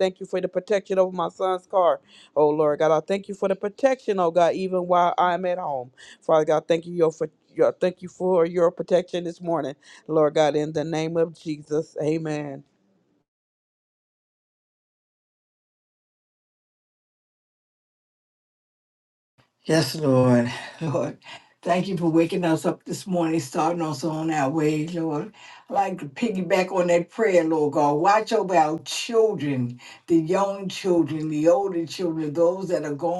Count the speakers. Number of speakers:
2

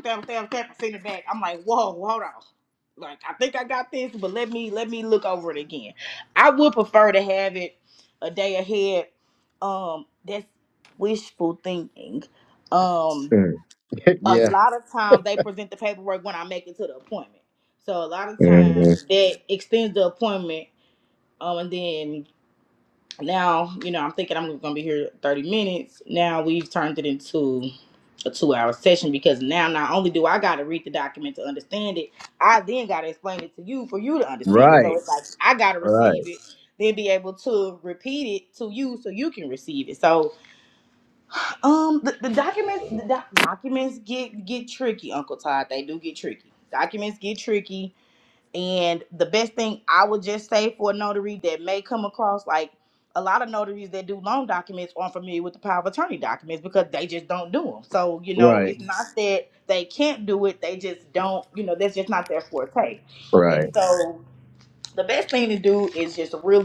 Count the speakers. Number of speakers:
2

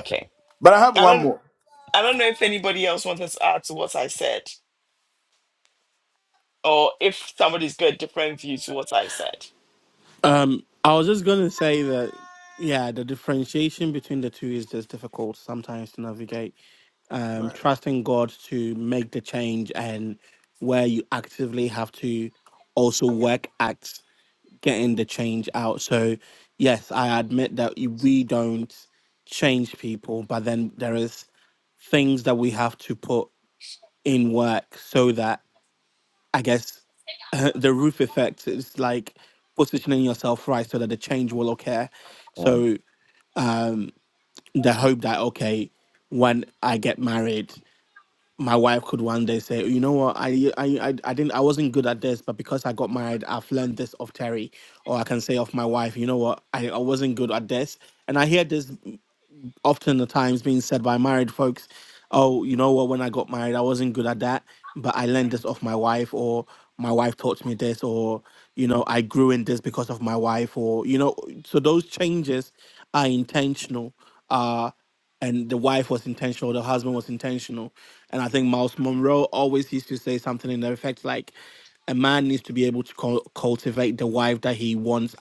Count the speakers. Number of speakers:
3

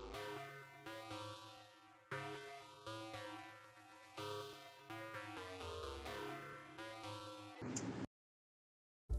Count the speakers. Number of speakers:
0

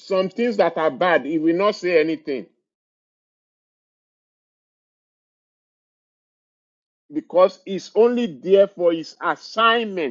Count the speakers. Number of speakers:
1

